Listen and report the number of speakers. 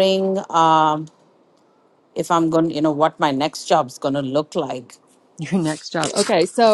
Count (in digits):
2